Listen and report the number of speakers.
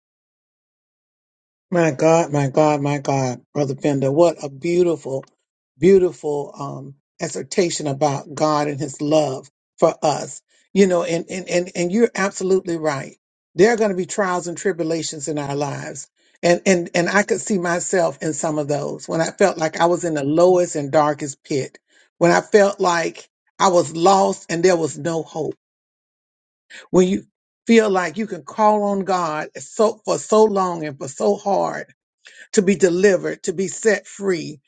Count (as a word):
one